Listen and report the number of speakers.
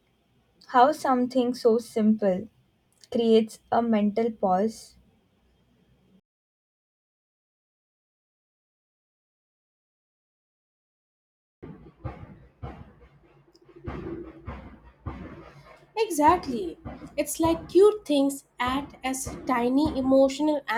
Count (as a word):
two